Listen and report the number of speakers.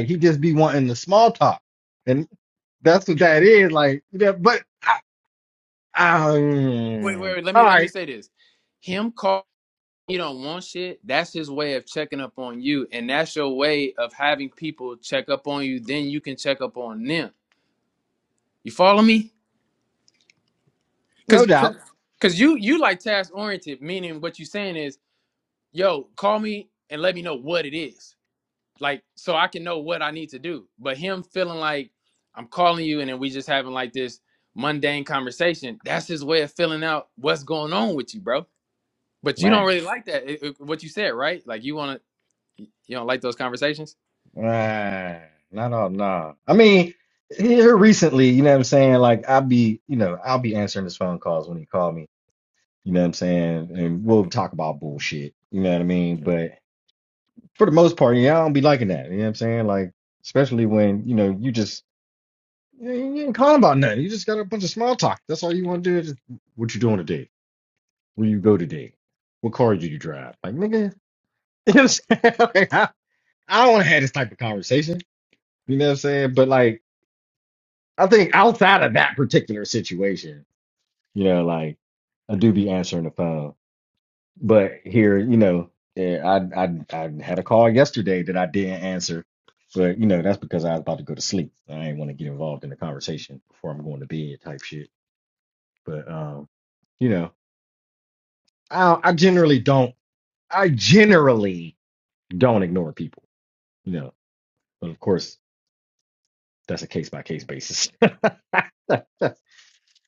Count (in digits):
2